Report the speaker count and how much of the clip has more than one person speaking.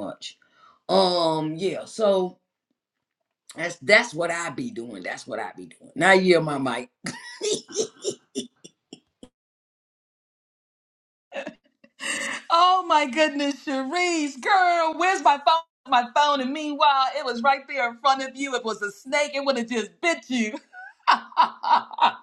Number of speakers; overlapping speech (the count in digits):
2, no overlap